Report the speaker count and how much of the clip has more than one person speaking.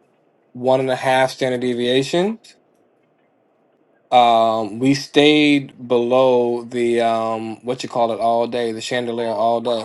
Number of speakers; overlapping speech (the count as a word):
one, no overlap